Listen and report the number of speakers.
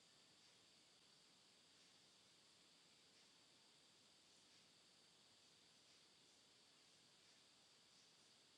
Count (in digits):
0